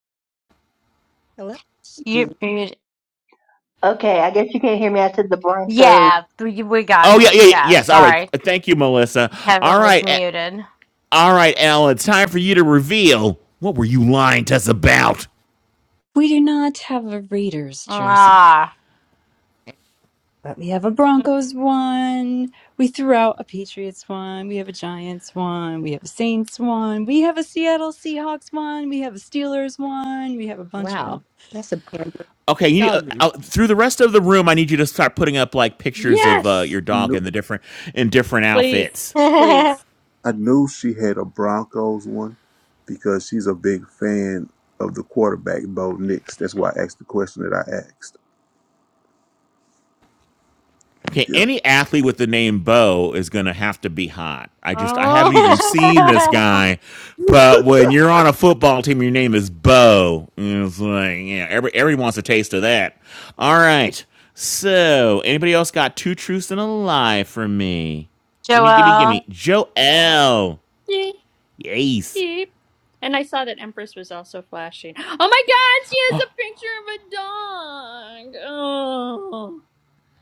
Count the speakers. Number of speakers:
7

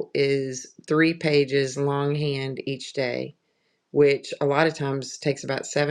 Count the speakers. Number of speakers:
1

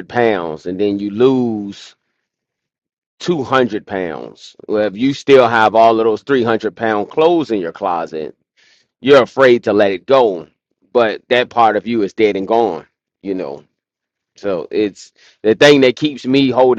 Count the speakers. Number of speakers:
1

